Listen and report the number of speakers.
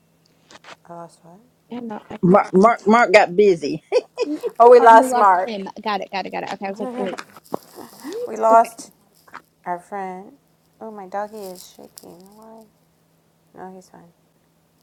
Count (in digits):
3